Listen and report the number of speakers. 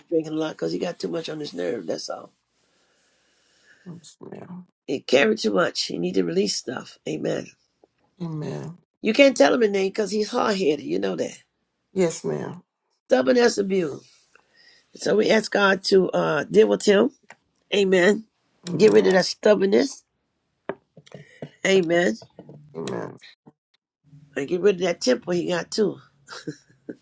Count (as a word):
two